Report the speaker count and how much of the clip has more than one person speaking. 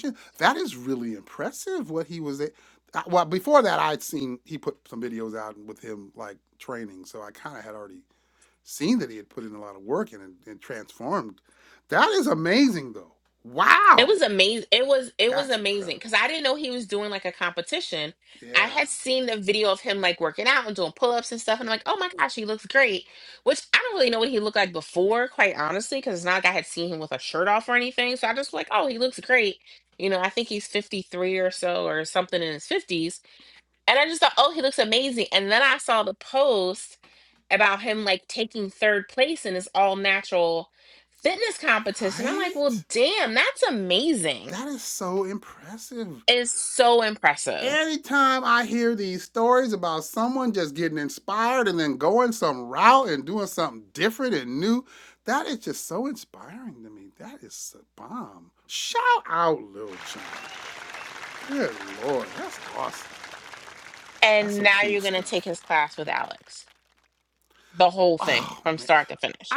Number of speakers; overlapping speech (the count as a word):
two, about 6%